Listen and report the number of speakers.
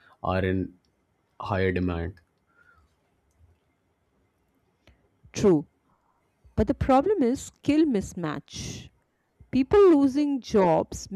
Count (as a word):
two